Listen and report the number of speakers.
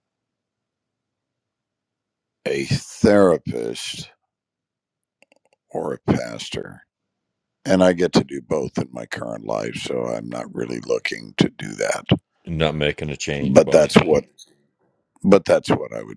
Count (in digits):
2